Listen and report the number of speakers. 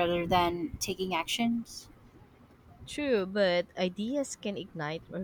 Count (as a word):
two